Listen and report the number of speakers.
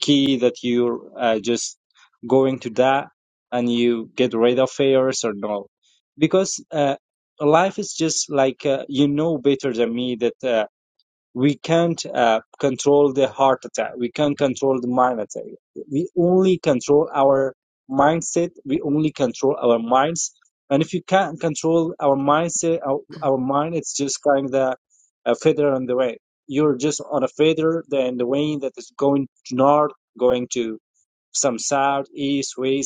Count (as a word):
one